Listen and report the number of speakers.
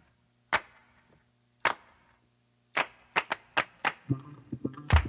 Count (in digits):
0